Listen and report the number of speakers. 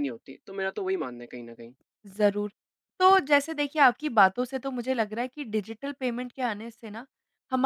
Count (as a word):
two